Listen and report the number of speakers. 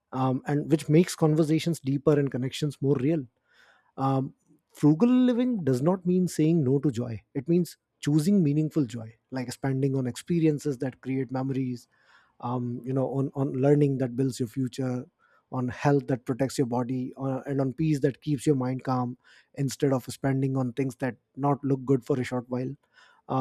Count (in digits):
1